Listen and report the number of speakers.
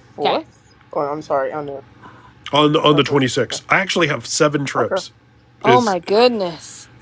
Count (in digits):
3